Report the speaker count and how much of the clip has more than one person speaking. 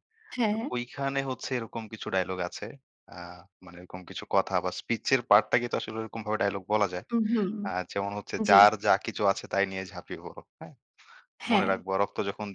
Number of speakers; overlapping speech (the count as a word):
two, about 5%